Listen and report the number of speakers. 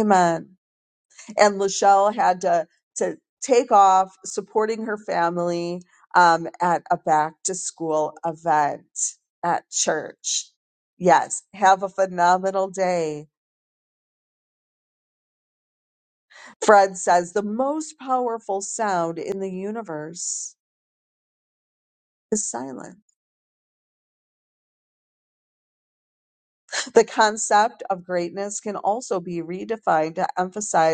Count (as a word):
one